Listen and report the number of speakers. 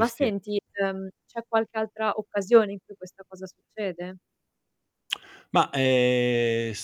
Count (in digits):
2